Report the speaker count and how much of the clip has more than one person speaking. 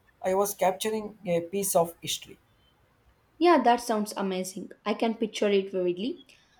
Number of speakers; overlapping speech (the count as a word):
two, no overlap